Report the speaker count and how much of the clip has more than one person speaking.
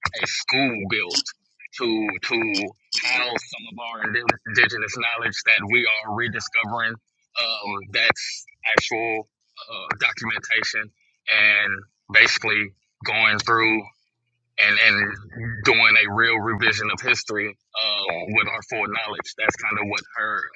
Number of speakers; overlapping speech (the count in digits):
1, no overlap